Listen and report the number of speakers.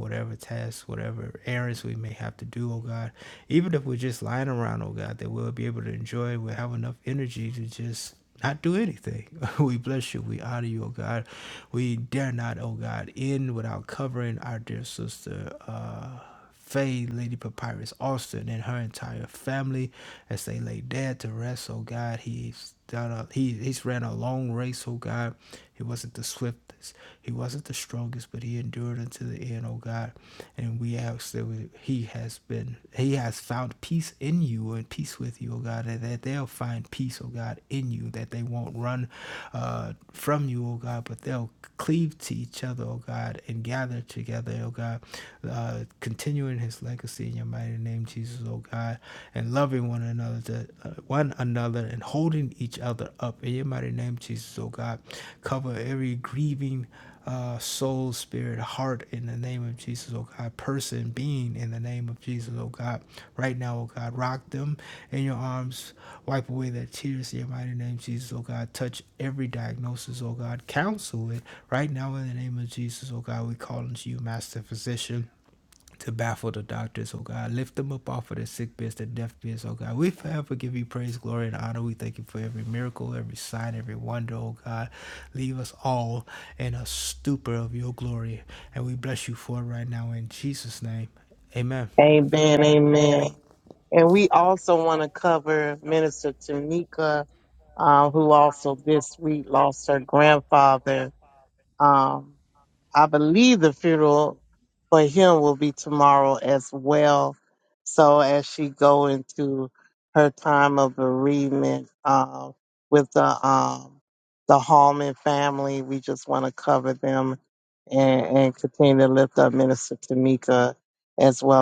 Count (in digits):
2